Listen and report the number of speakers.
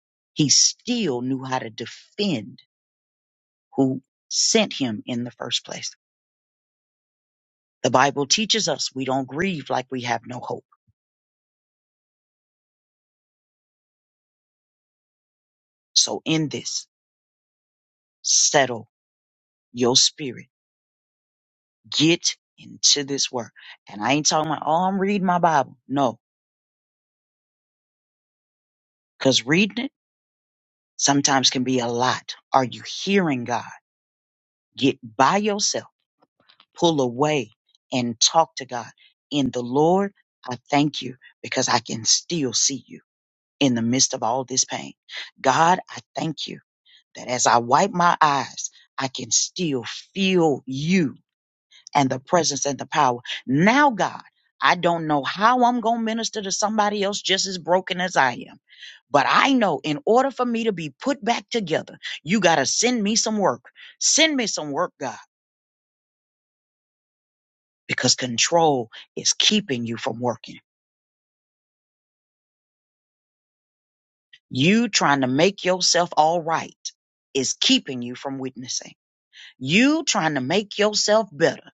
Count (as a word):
one